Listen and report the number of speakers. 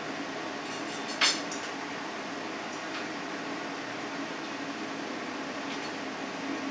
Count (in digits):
0